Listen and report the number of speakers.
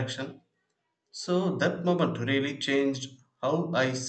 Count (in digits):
1